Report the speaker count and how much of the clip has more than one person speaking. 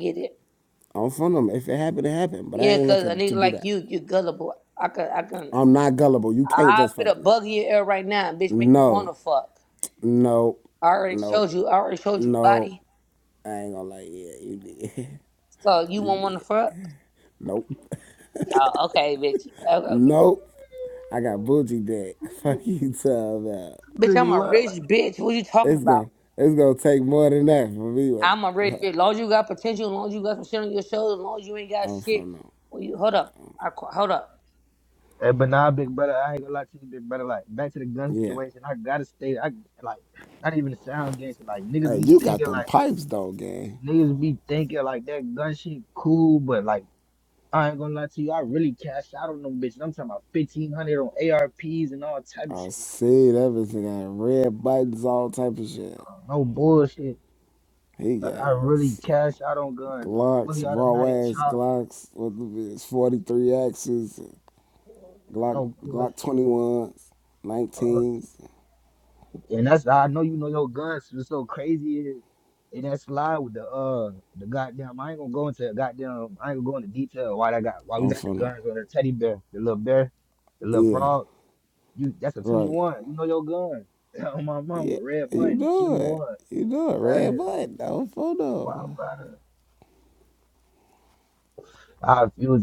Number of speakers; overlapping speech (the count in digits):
3, about 14%